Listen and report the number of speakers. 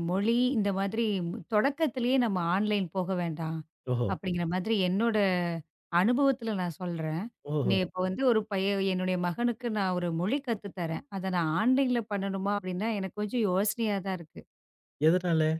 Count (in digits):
2